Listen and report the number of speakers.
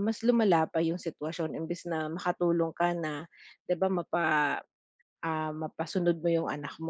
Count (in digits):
1